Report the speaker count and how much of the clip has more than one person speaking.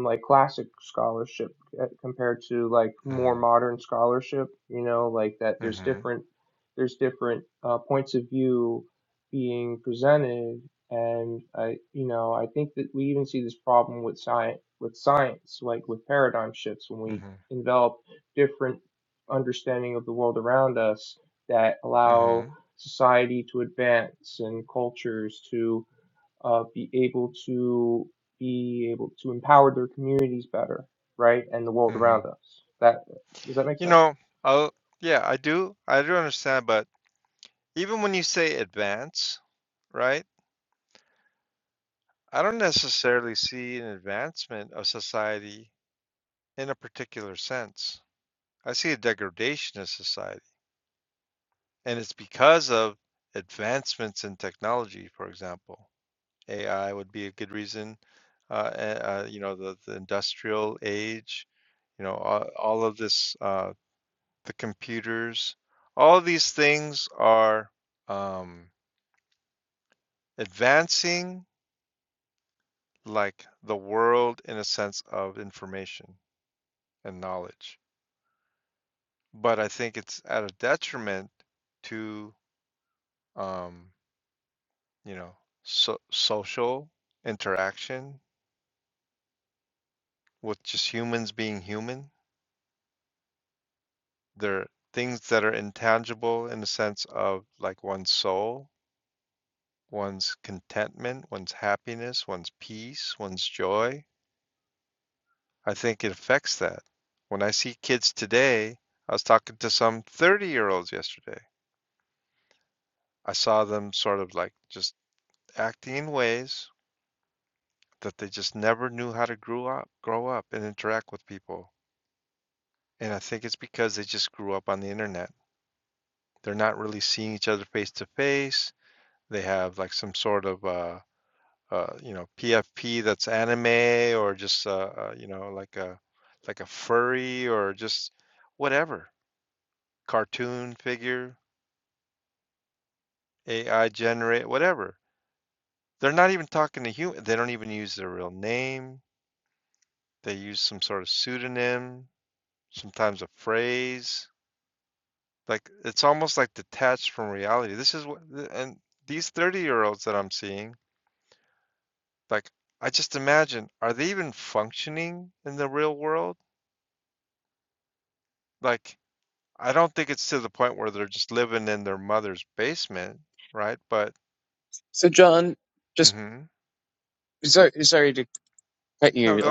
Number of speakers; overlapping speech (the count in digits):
3, about 1%